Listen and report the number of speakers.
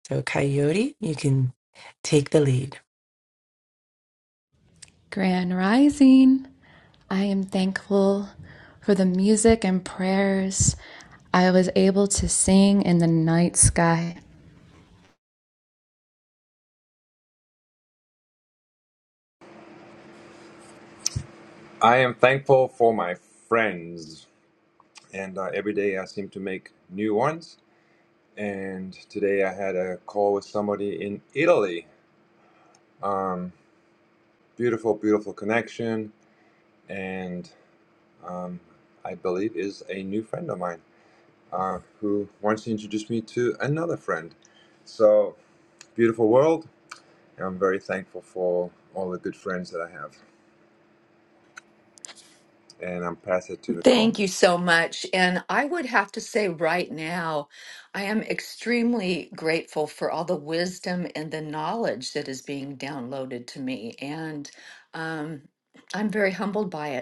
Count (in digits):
4